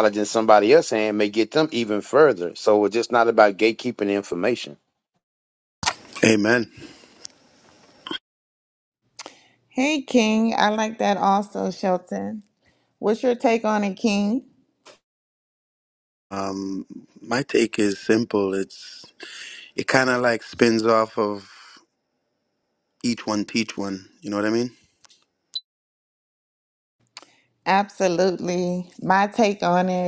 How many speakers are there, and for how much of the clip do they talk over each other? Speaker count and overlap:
3, no overlap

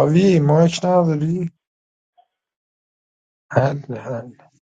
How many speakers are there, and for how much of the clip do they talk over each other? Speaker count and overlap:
1, no overlap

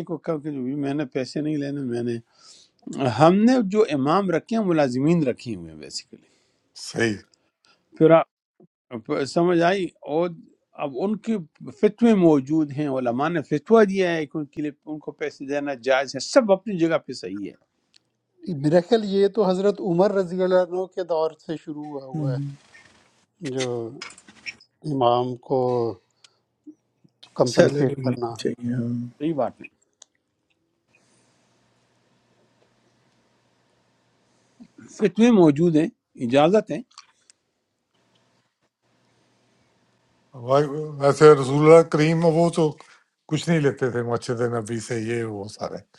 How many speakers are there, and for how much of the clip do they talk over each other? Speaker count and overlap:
4, about 2%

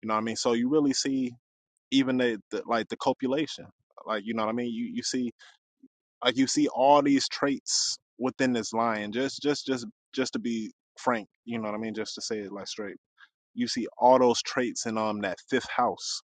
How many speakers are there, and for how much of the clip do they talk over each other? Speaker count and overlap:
1, no overlap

